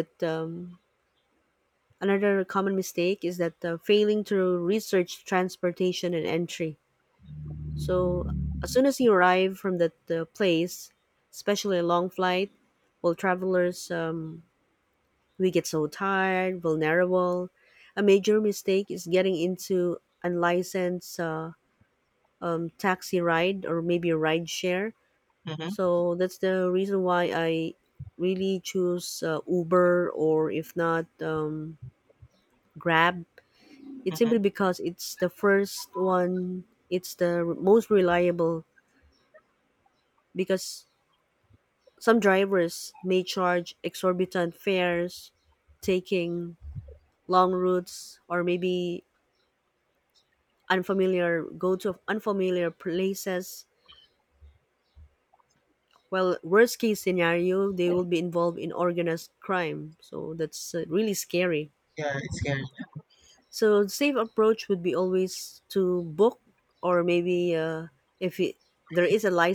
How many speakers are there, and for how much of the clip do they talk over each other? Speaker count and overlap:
2, under 1%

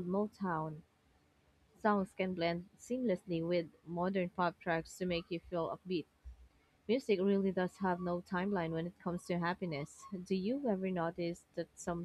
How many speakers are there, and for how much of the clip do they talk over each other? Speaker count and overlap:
1, no overlap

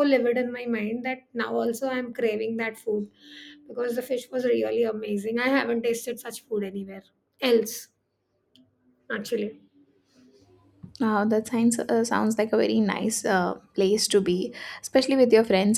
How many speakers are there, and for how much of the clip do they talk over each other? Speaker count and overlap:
2, no overlap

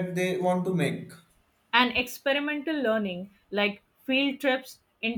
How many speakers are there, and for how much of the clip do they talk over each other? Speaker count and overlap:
2, no overlap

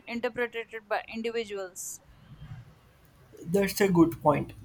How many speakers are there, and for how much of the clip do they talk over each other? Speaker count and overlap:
2, no overlap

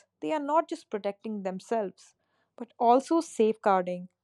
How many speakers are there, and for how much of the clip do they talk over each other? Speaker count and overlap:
1, no overlap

